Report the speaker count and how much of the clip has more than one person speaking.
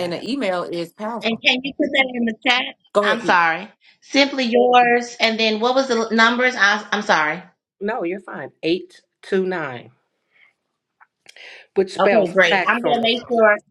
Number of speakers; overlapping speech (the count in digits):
3, about 15%